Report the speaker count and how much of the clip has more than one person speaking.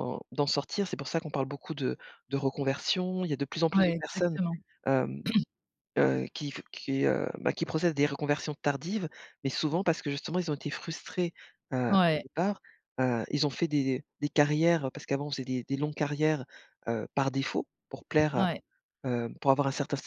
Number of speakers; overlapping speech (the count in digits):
2, about 5%